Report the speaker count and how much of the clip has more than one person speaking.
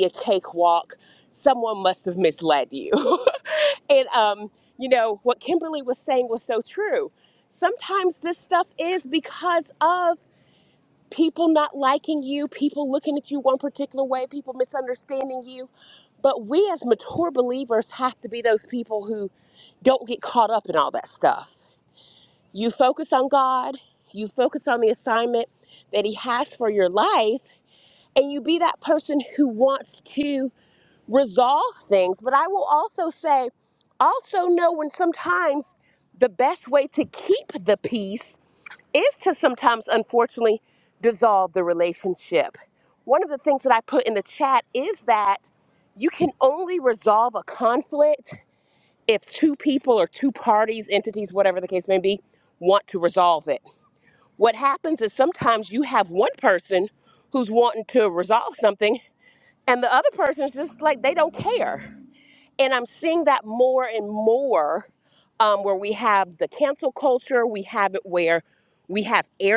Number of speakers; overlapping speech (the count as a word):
one, no overlap